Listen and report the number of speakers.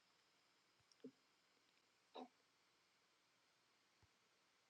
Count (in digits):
0